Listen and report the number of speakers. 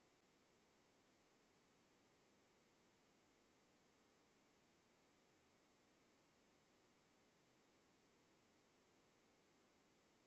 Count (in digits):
0